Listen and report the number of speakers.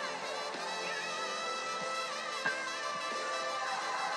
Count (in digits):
0